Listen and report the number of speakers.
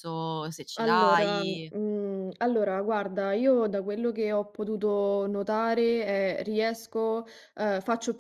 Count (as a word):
two